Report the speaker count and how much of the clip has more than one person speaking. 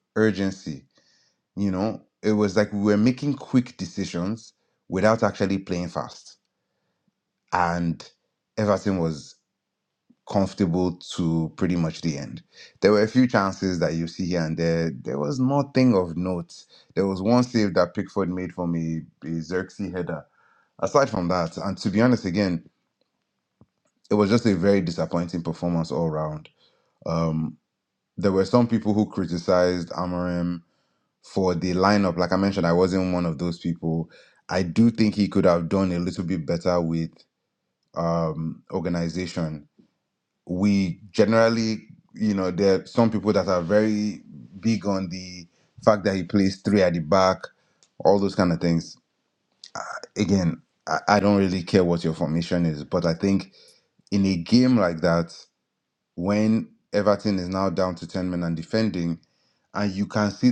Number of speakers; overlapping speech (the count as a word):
one, no overlap